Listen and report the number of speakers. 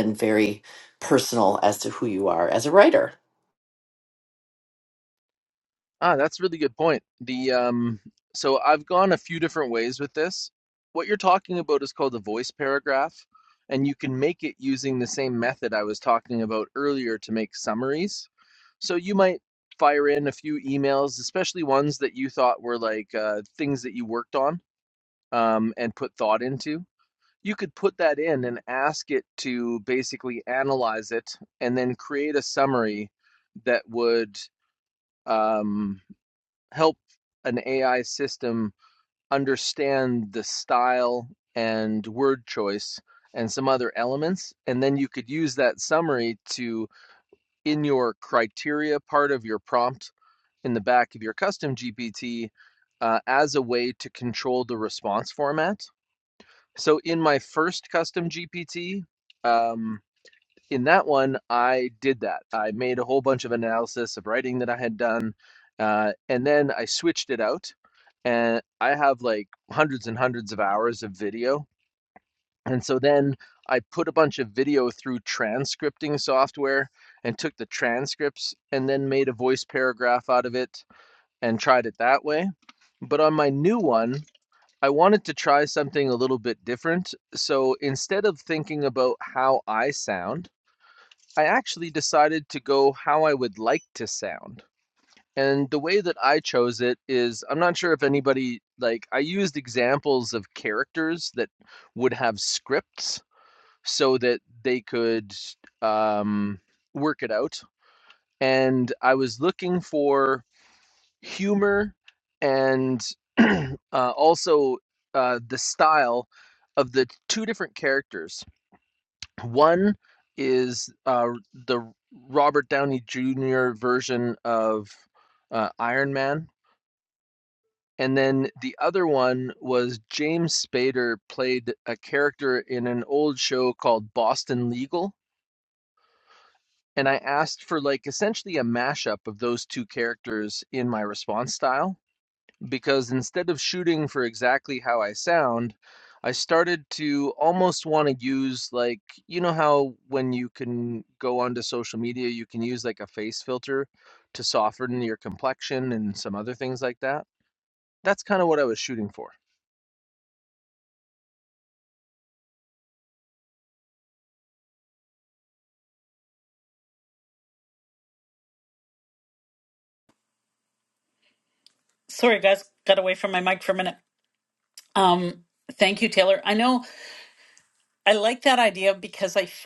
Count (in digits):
3